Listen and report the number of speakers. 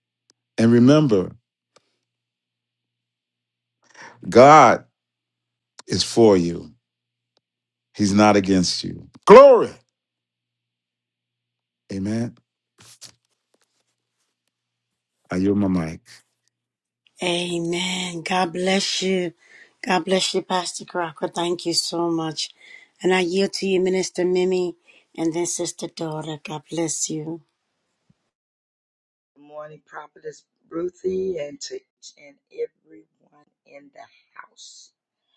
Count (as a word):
three